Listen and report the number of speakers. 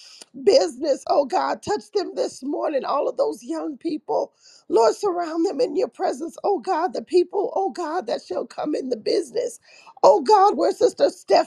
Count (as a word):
one